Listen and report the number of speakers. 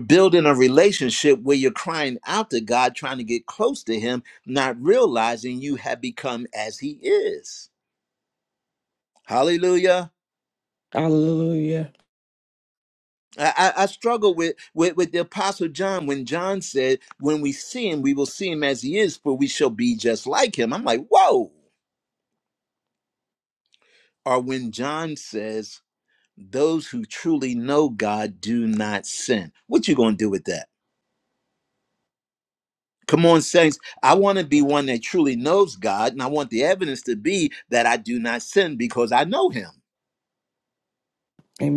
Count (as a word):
two